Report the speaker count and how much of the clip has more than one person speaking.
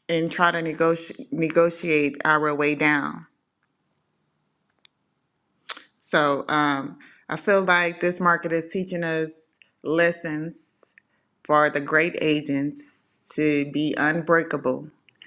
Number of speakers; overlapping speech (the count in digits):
1, no overlap